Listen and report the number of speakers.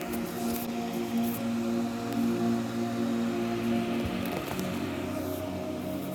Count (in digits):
0